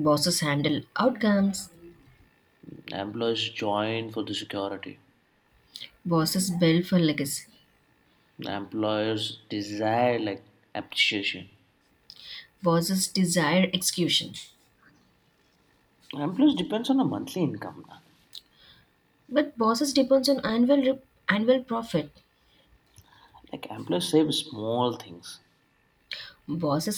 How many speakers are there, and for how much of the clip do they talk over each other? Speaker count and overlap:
two, no overlap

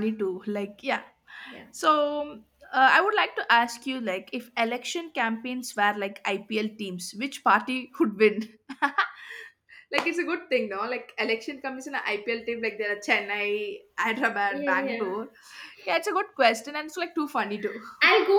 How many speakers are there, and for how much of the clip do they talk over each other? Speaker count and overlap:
two, about 4%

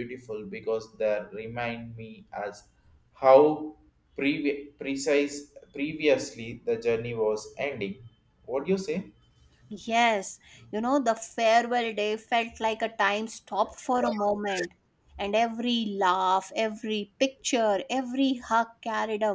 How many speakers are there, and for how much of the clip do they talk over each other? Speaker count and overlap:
two, no overlap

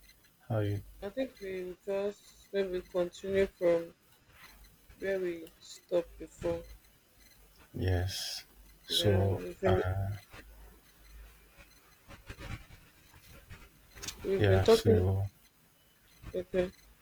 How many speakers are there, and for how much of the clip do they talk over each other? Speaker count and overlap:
two, about 9%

